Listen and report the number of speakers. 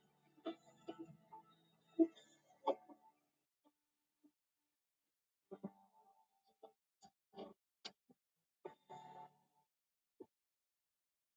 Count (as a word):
zero